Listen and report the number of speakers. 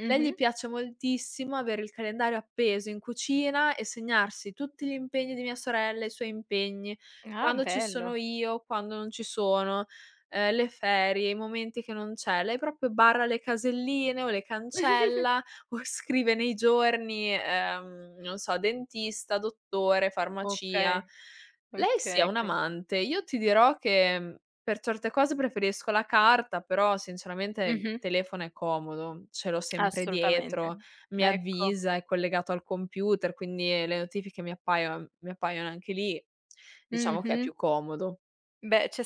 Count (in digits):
2